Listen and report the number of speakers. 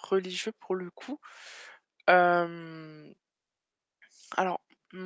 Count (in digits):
1